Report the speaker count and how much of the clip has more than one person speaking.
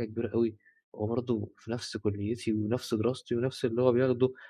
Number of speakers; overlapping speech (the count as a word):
one, no overlap